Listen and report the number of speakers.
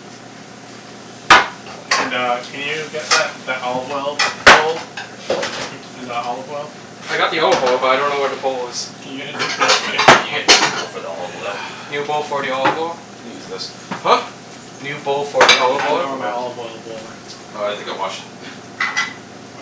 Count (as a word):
four